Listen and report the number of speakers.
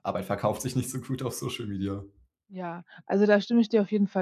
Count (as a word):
two